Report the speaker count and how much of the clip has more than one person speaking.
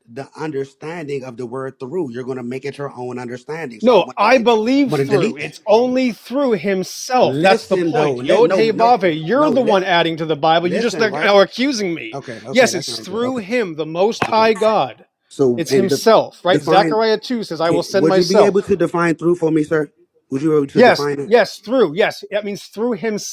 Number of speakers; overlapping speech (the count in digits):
2, about 34%